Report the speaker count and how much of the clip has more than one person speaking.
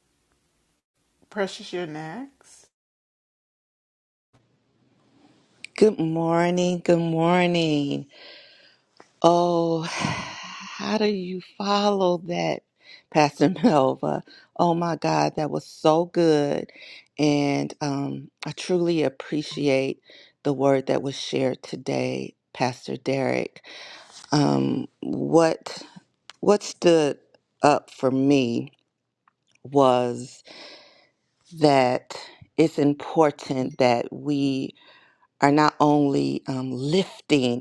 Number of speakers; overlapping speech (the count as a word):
two, no overlap